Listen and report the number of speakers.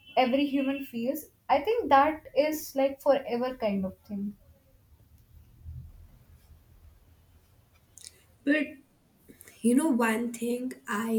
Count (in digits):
2